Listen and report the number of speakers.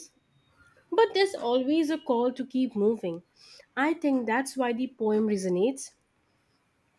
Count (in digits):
1